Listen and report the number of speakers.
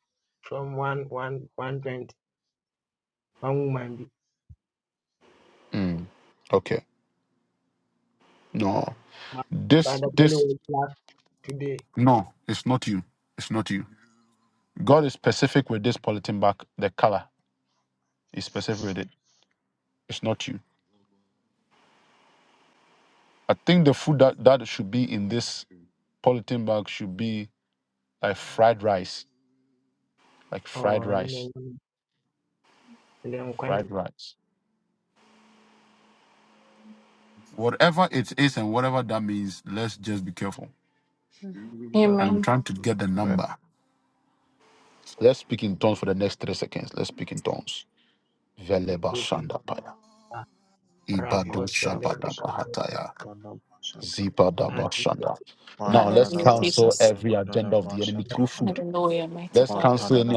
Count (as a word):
four